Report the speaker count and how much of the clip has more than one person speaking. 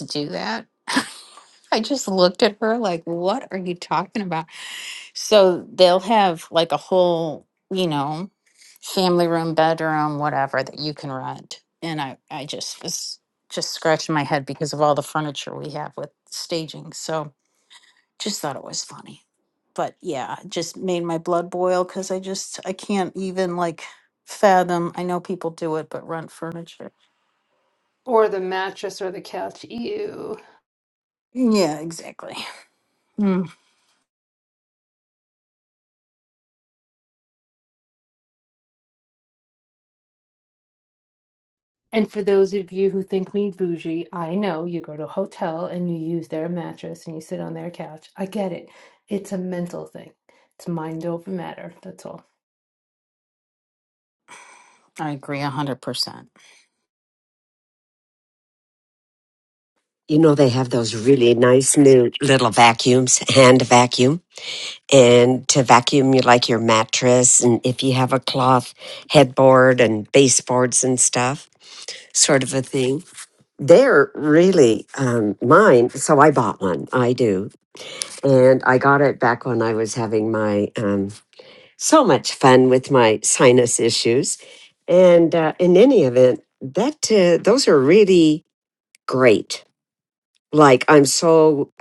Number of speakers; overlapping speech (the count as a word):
three, no overlap